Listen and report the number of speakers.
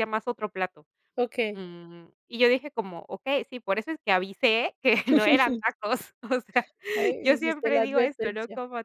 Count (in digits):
2